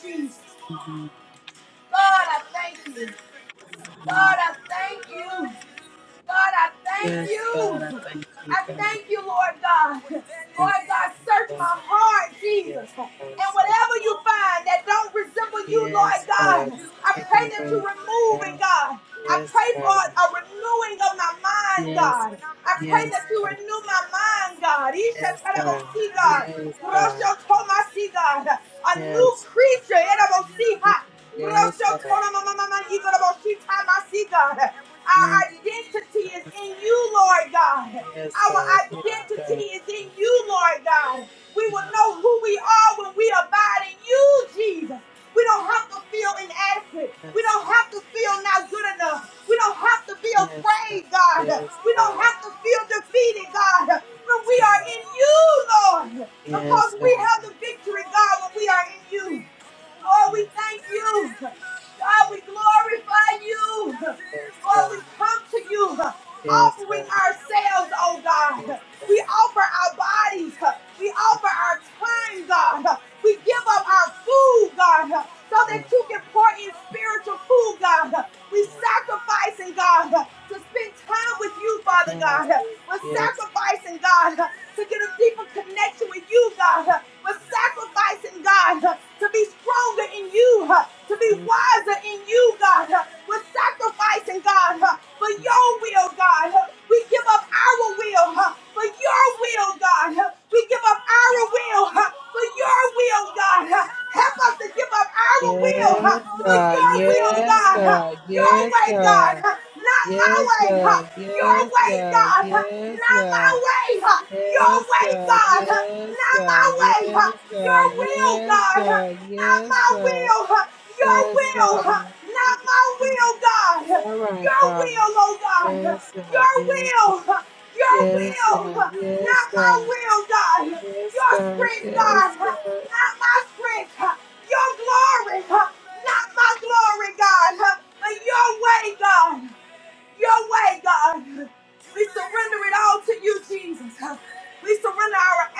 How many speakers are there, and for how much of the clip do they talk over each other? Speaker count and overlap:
two, about 24%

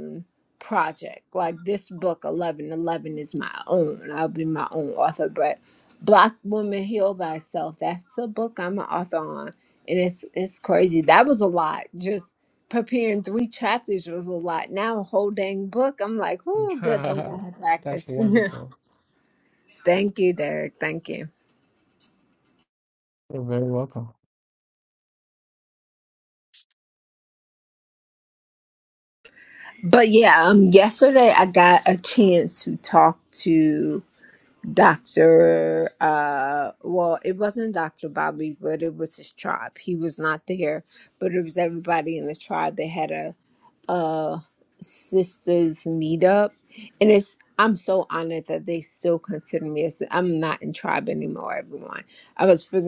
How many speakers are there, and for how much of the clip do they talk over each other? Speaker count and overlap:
two, about 2%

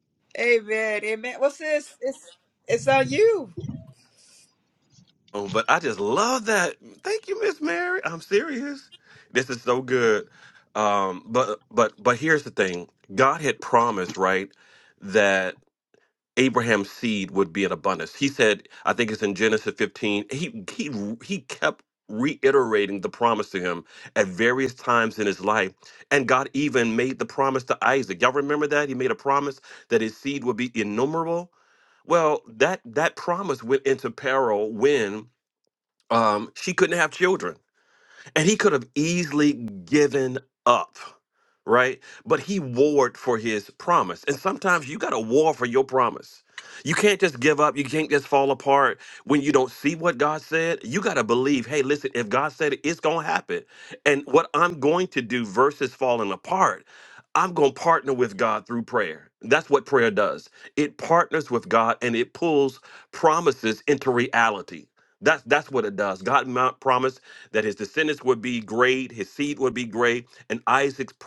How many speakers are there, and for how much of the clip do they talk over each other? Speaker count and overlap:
two, no overlap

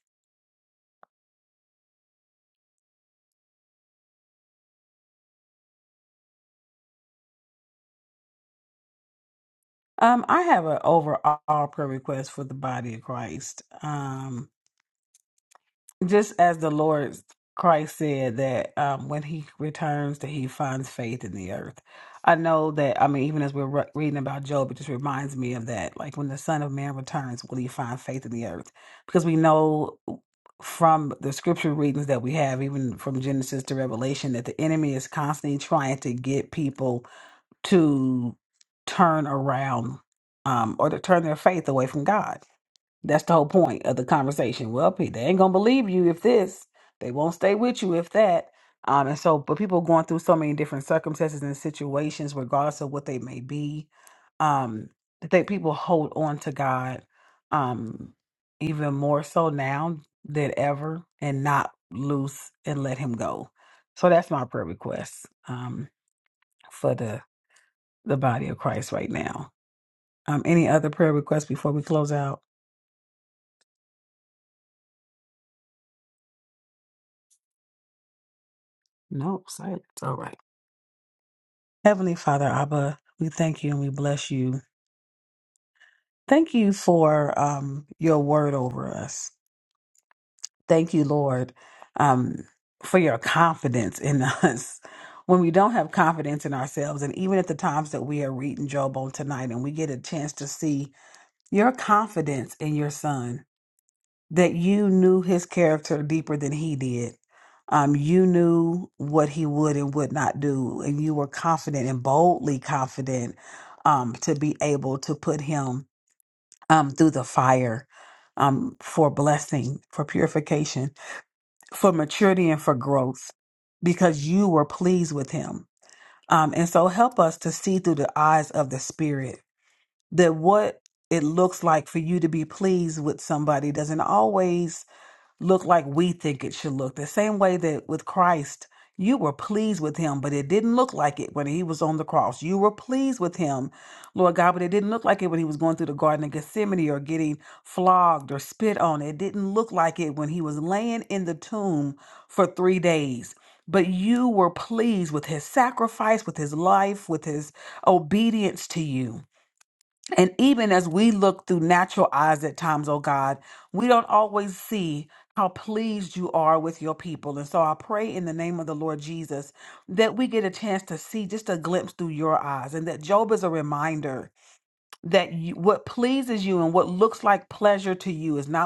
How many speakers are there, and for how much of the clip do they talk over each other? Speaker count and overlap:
one, no overlap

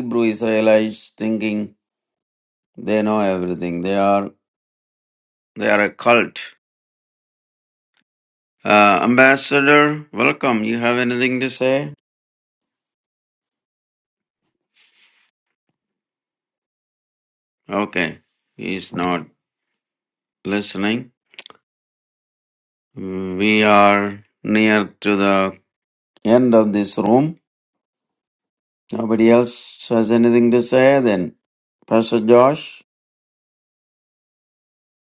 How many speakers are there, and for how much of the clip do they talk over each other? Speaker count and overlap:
one, no overlap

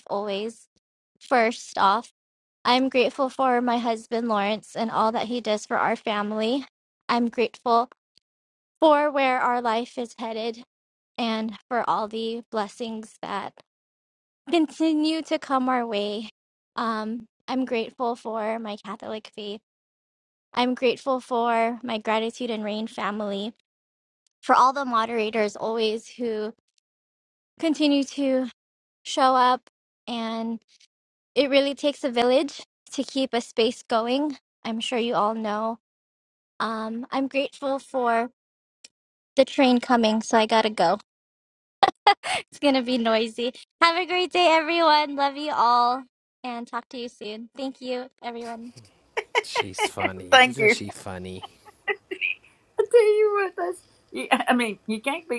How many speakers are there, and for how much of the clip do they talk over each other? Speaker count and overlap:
three, about 1%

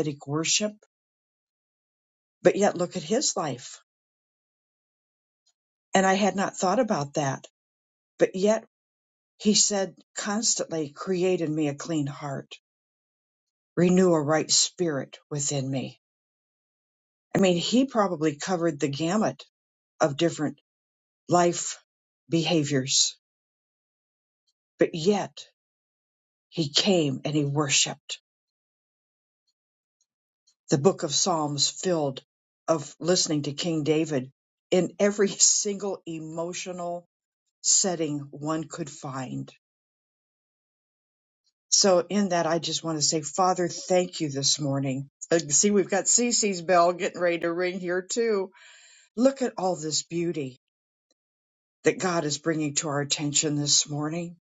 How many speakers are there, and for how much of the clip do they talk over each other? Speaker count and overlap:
one, no overlap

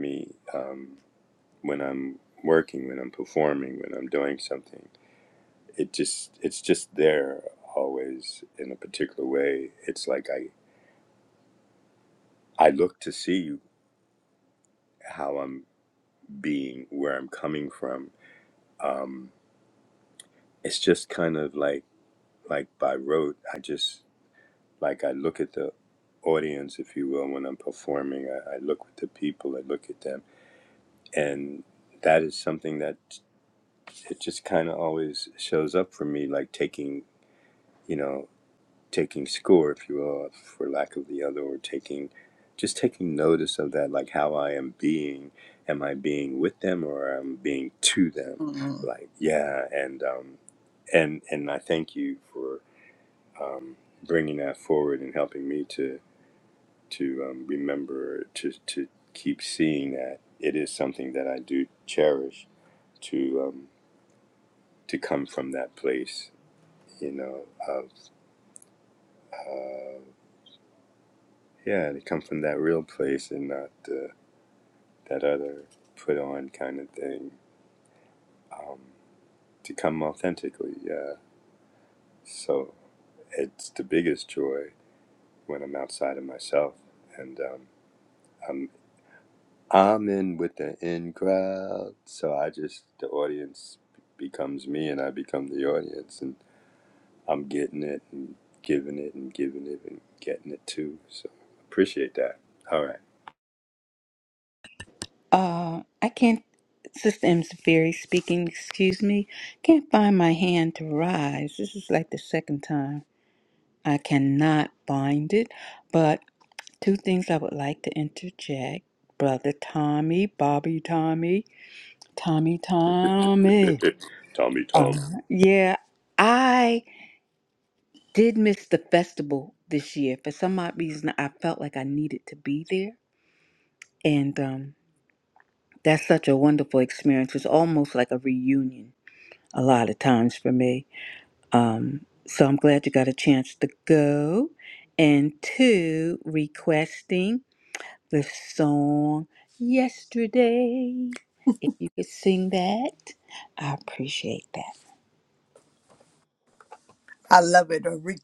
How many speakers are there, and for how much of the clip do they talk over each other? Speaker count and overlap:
three, under 1%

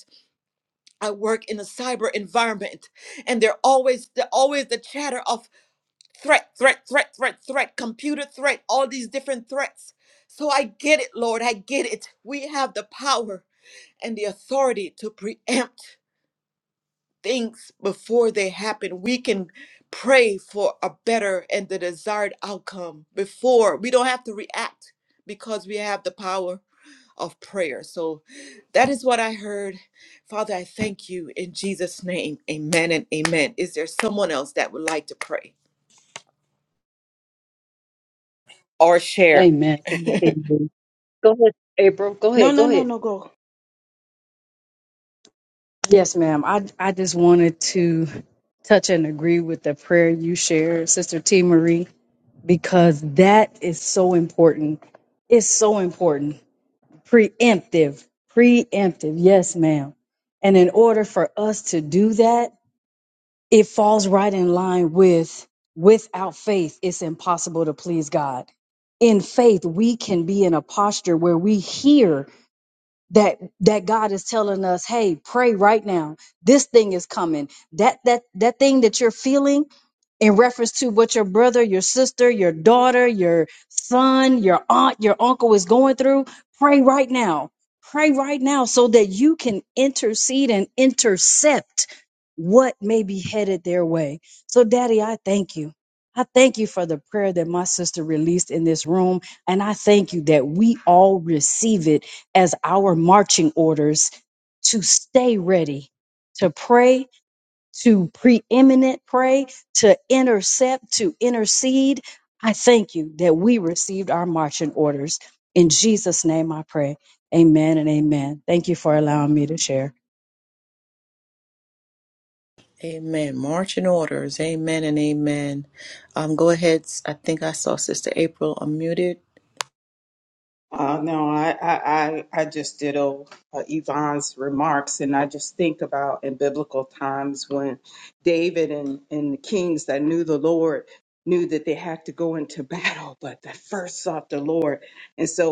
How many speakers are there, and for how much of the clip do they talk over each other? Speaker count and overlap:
three, about 1%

